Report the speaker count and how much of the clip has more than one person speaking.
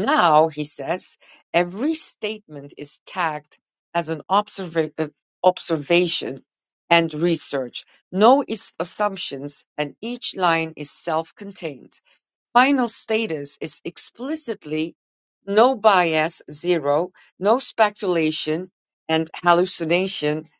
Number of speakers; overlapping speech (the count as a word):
one, no overlap